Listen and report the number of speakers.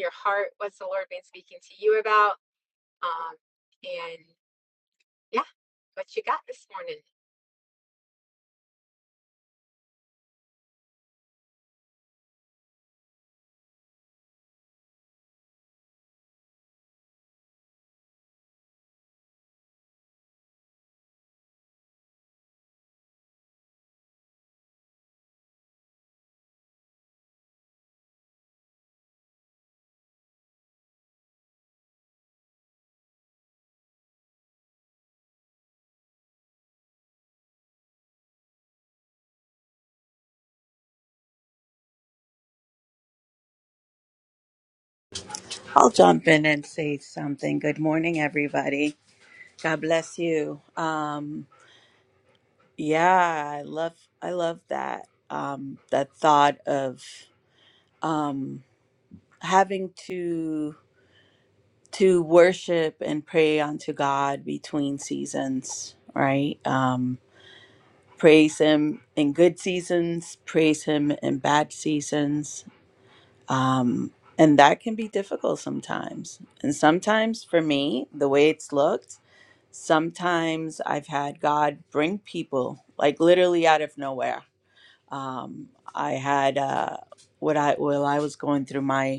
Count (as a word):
two